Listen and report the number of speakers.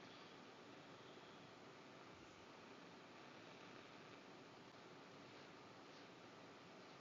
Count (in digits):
0